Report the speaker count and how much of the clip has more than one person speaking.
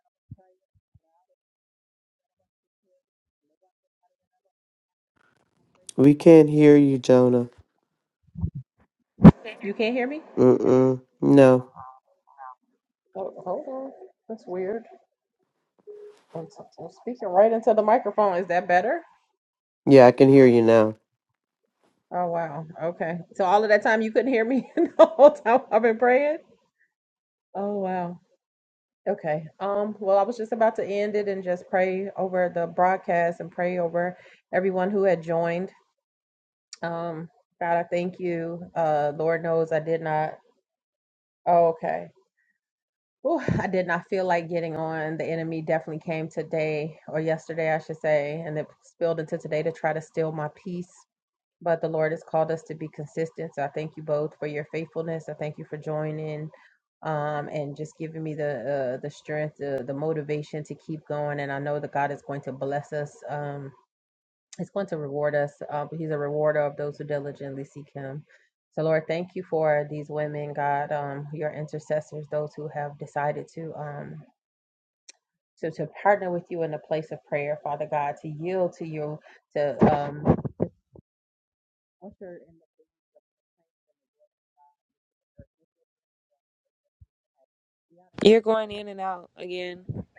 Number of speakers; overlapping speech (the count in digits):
3, no overlap